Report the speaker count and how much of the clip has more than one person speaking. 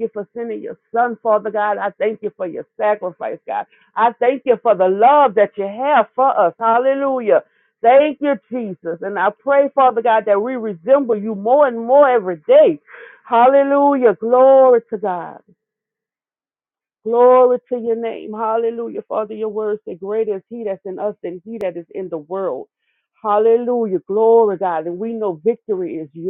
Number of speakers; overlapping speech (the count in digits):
1, no overlap